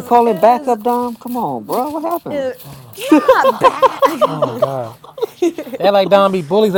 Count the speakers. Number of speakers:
three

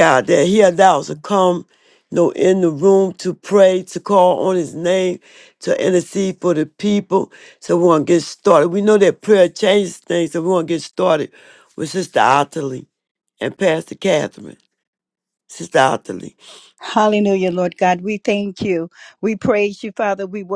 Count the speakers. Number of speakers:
two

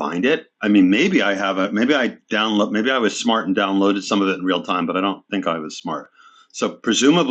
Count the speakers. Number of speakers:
one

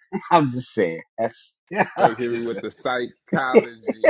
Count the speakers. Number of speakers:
two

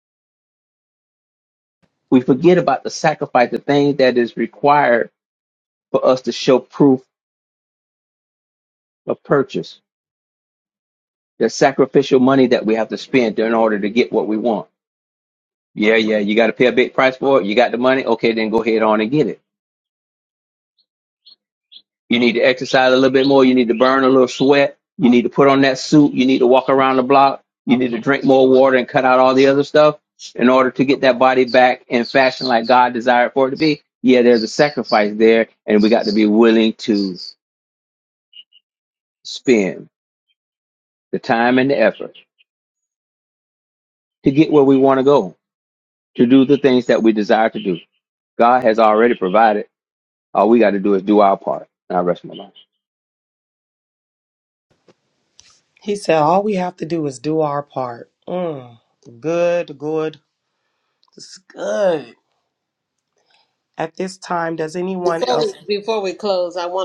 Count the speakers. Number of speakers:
three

